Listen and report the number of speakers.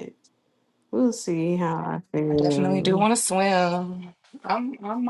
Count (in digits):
2